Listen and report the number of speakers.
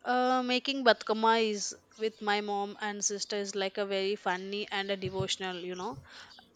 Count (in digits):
1